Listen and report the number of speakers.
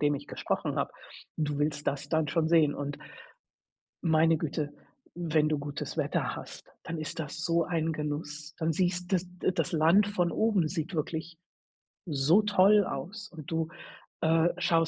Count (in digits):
1